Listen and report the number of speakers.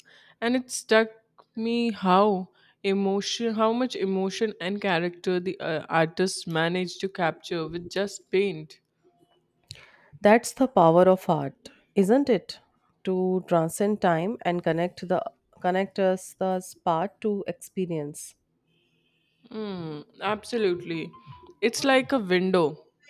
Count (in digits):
2